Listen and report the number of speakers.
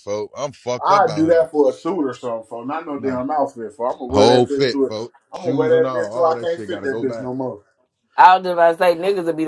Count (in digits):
3